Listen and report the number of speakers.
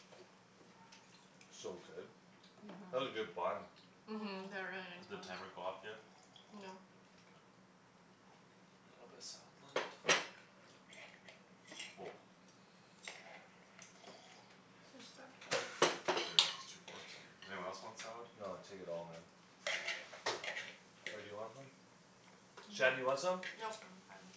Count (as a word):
four